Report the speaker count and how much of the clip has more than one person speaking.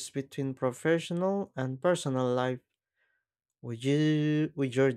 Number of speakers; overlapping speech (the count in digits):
1, no overlap